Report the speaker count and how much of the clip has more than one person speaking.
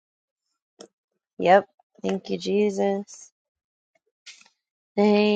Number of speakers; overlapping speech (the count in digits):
1, no overlap